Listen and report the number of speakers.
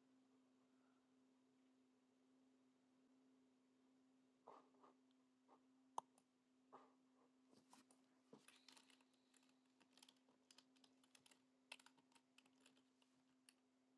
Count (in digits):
0